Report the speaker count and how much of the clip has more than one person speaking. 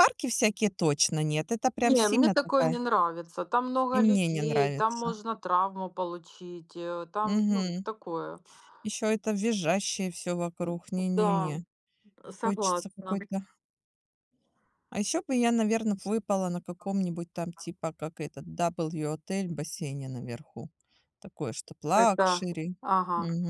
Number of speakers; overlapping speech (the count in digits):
2, about 19%